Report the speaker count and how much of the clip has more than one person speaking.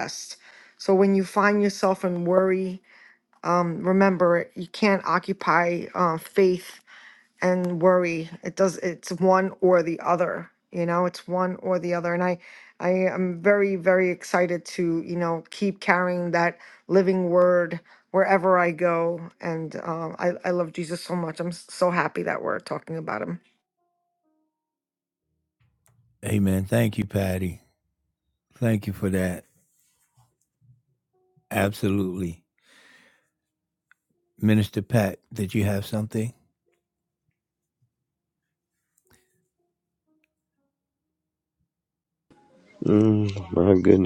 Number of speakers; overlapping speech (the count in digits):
3, no overlap